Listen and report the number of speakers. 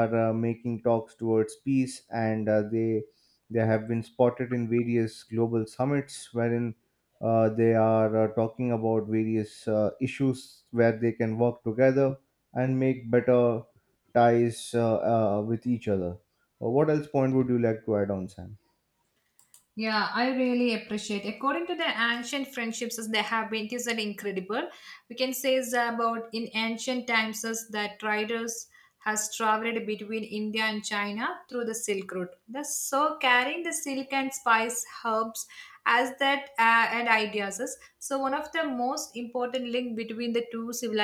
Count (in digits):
2